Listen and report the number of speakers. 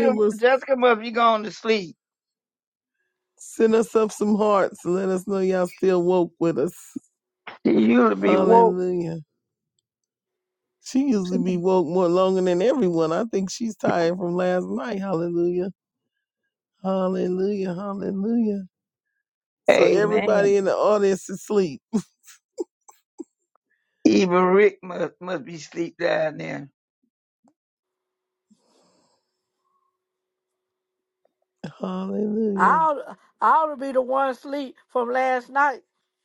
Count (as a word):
three